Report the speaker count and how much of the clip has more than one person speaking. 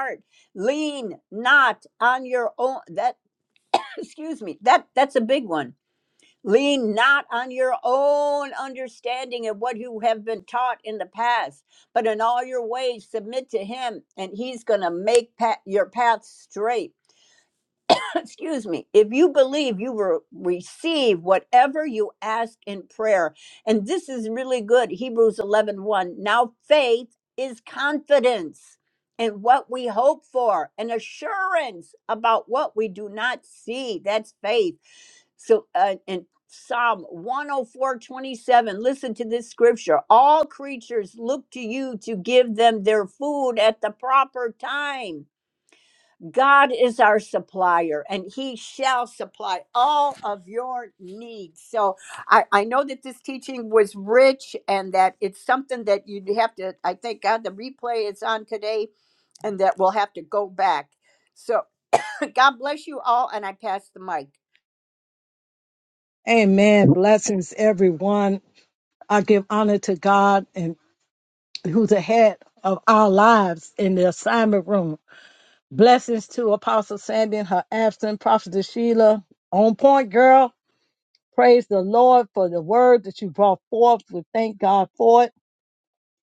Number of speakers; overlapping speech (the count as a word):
two, no overlap